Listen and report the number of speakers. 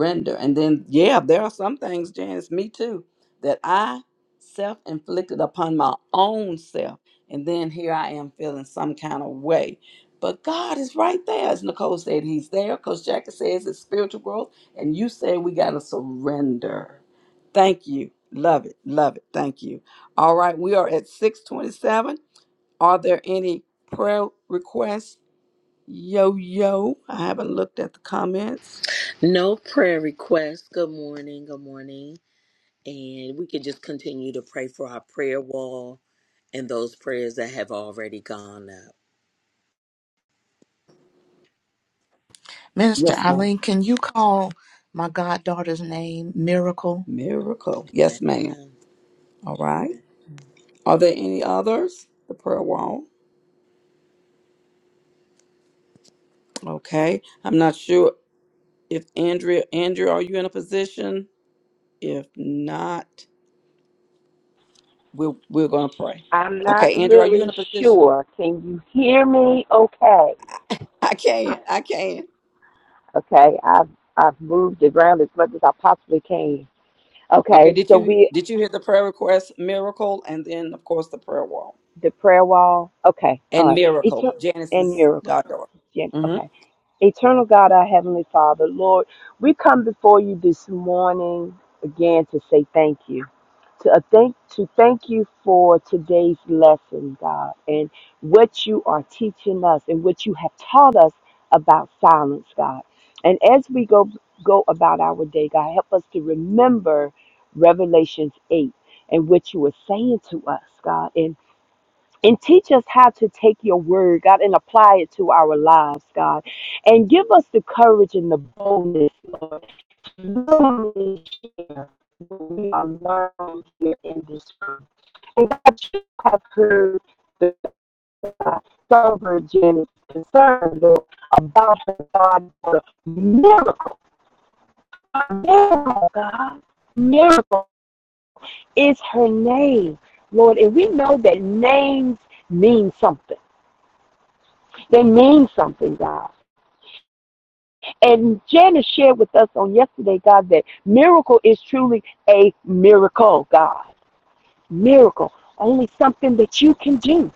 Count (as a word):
four